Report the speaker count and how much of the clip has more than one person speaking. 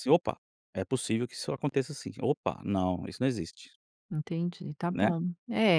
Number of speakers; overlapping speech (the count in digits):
2, about 4%